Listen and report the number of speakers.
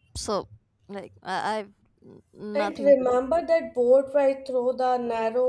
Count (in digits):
2